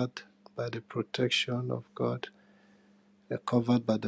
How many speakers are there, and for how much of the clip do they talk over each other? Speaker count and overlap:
1, no overlap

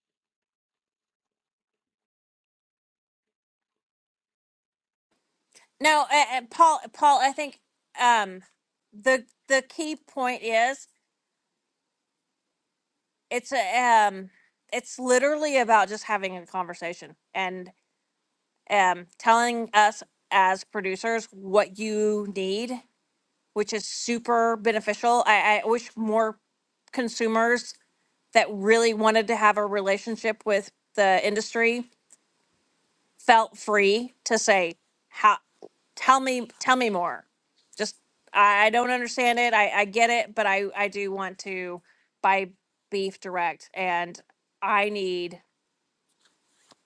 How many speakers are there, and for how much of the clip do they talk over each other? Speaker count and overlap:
1, no overlap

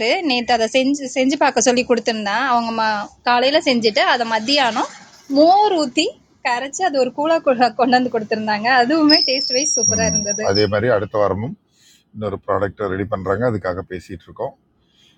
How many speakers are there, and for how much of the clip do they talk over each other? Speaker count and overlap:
2, about 4%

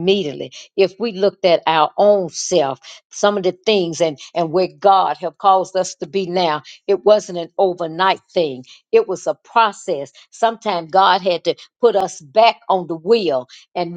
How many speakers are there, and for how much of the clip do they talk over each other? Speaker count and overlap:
1, no overlap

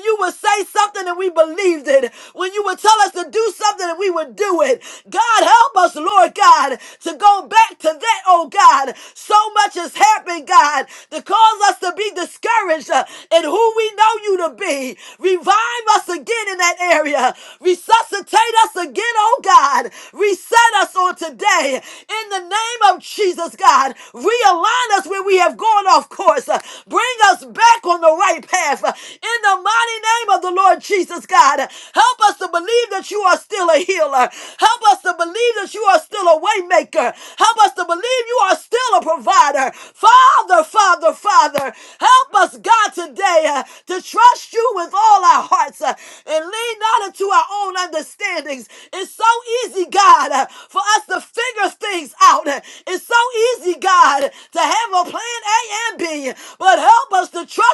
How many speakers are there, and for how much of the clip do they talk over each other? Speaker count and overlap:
1, no overlap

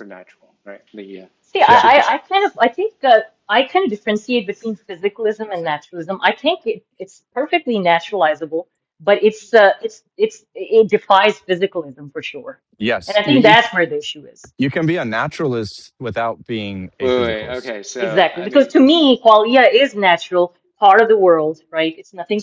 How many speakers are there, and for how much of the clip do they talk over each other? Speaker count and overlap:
3, about 10%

